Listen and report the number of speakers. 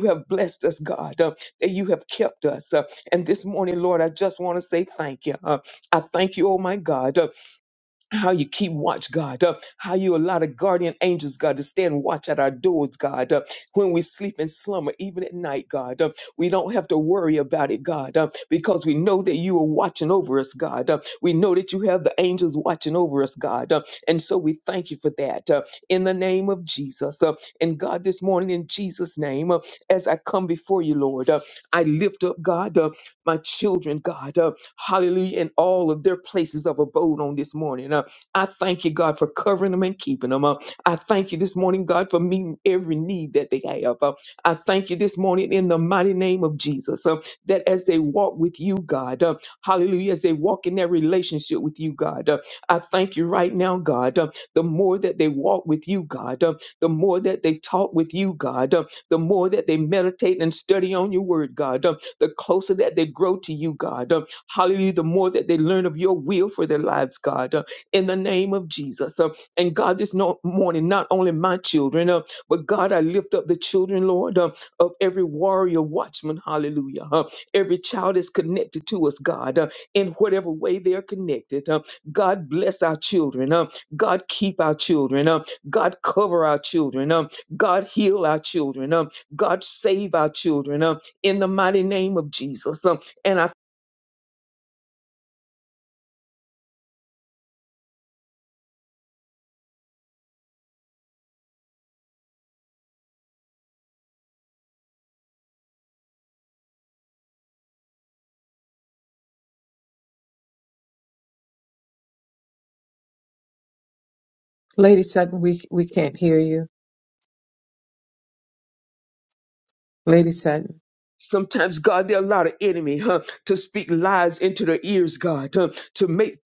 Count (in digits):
2